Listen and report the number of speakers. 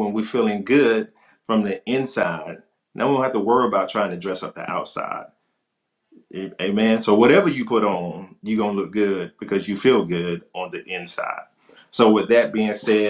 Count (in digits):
1